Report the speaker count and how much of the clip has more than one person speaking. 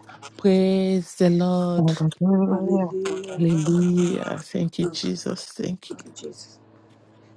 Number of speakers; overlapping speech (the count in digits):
3, about 11%